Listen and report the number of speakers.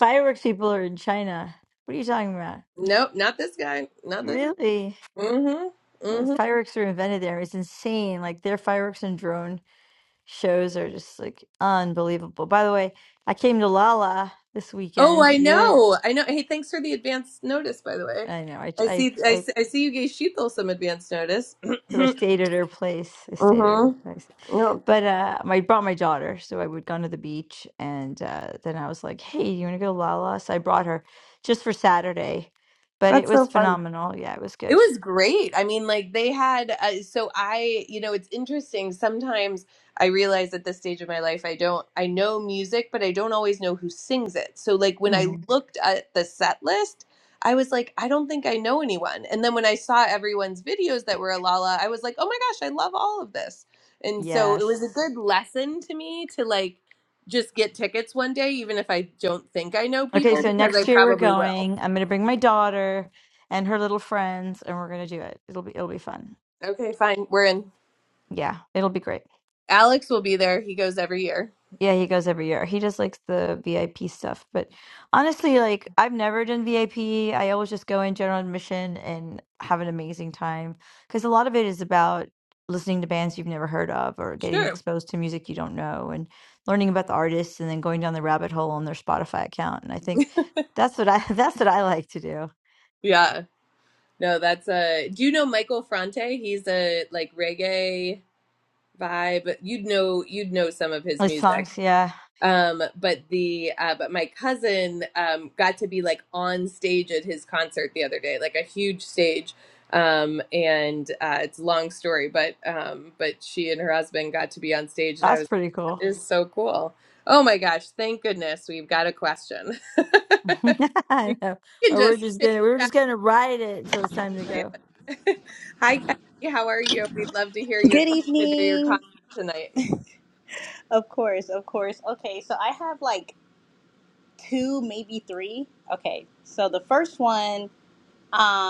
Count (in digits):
3